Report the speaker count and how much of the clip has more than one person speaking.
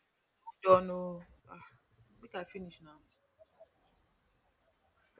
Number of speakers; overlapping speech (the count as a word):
one, no overlap